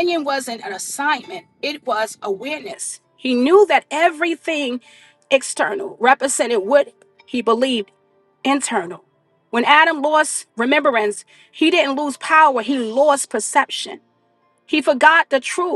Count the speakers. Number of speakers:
1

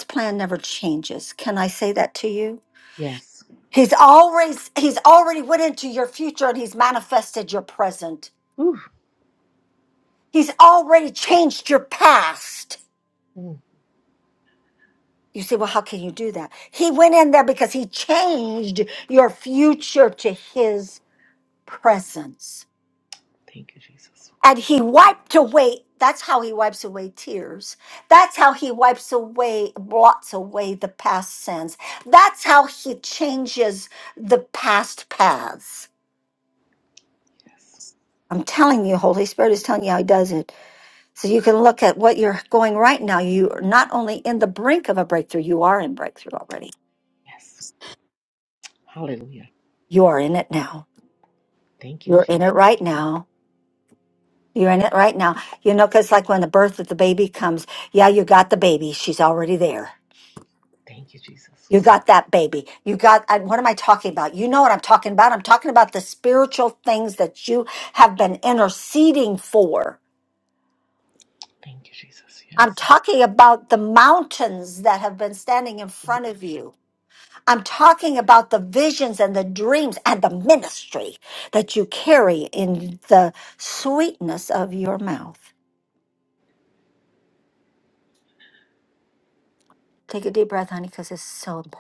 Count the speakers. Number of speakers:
2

